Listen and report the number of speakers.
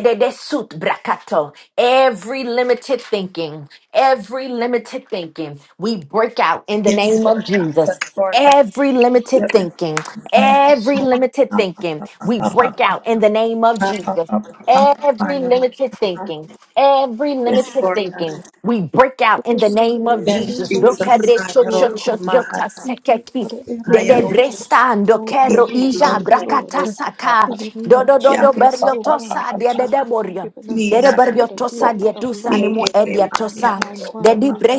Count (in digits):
3